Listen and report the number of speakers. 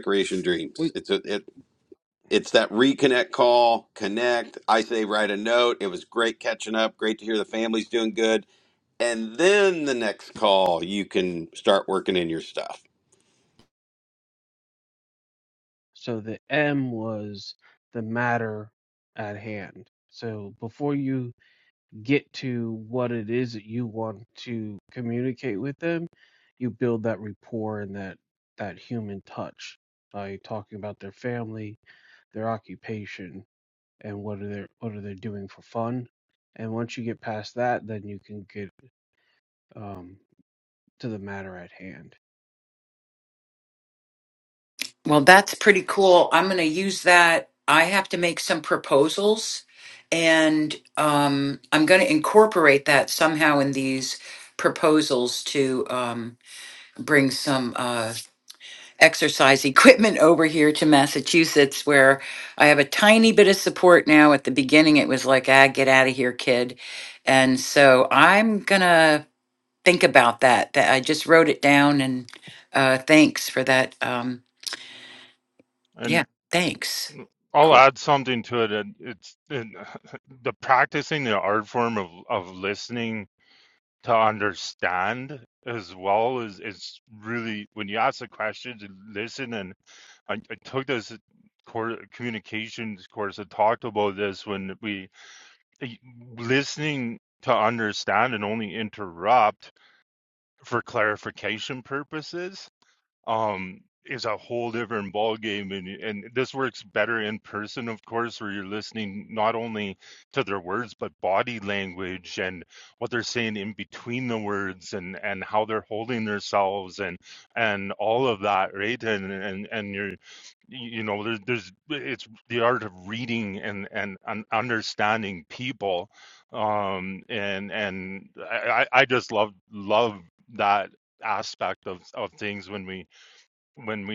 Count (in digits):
4